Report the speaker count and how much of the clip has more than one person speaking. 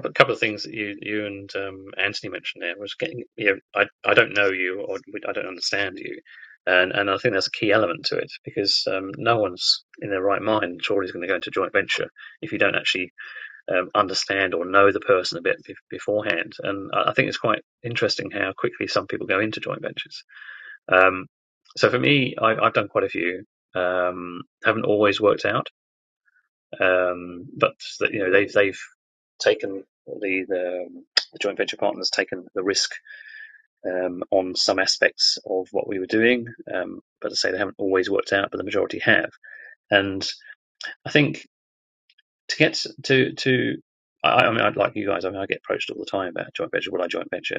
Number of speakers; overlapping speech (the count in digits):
1, no overlap